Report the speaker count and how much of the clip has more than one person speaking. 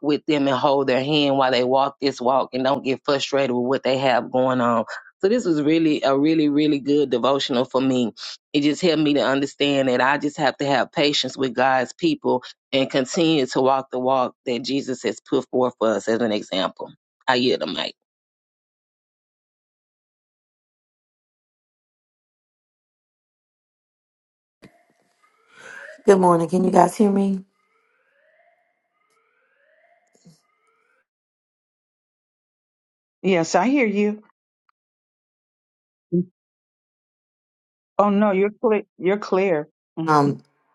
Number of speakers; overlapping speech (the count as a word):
three, about 1%